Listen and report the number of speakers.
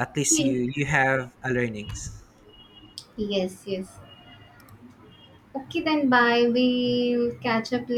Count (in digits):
2